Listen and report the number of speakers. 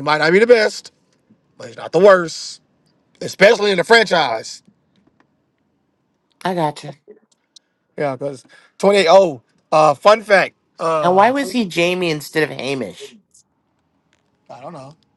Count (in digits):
2